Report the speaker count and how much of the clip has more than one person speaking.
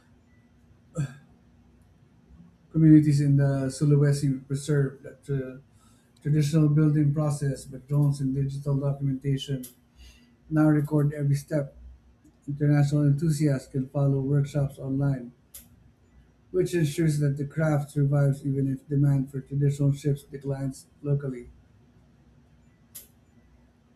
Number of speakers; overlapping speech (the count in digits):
1, no overlap